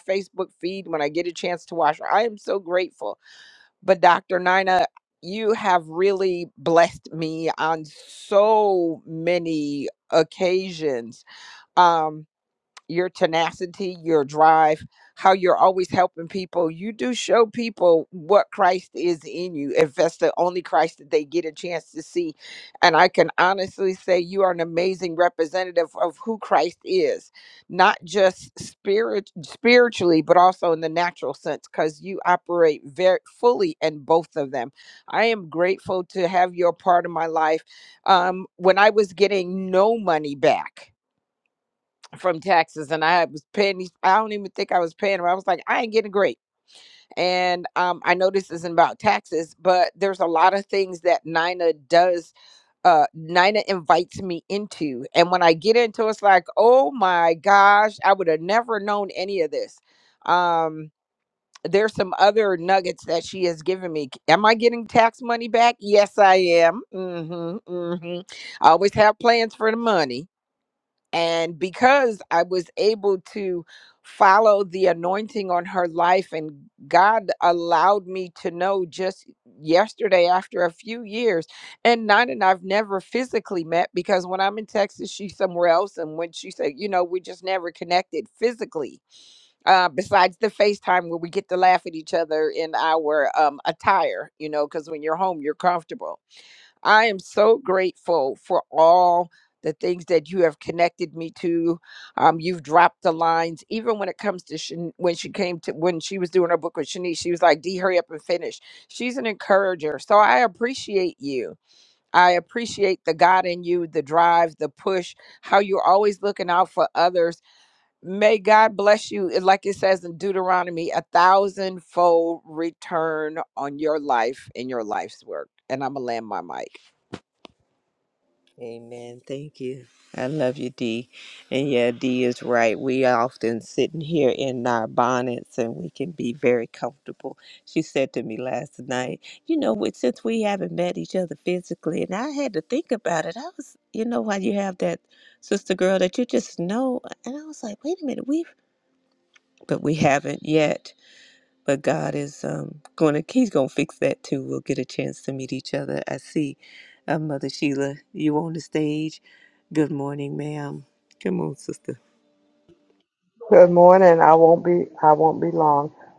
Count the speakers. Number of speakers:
3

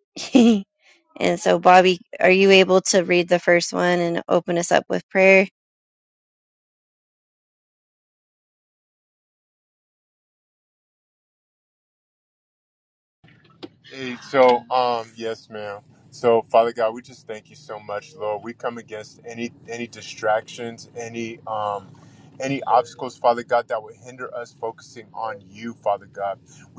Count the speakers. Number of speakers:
2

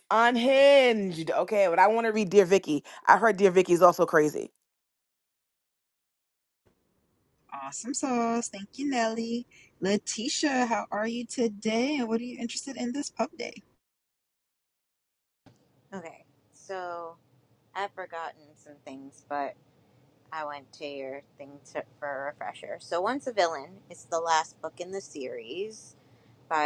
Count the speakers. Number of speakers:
3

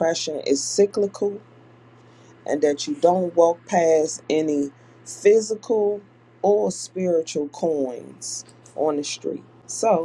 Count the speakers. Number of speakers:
1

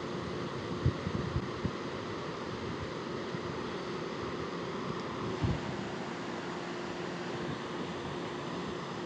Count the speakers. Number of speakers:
0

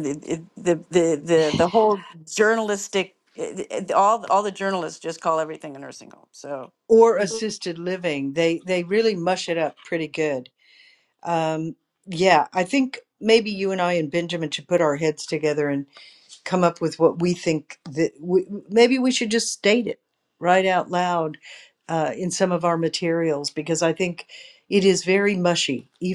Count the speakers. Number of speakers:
2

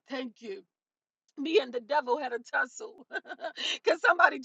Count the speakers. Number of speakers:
1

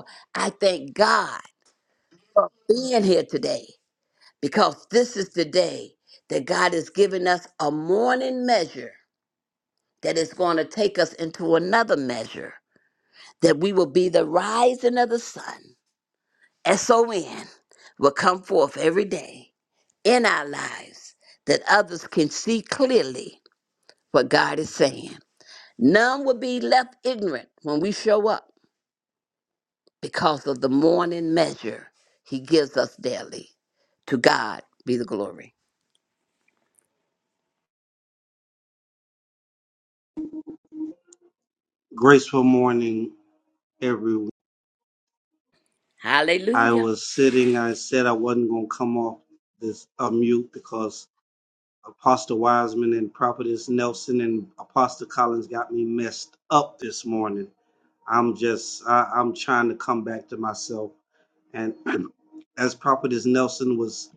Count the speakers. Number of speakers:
2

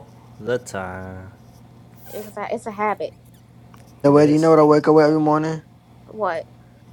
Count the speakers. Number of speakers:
3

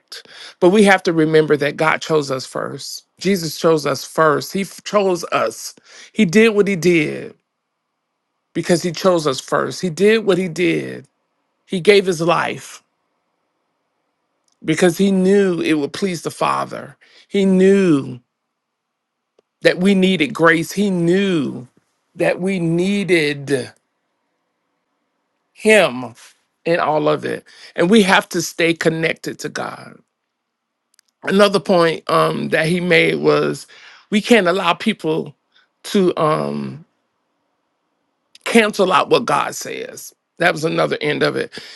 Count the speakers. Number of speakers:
1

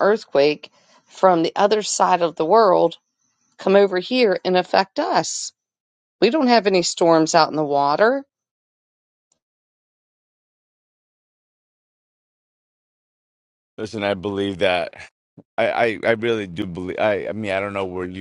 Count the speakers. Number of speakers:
2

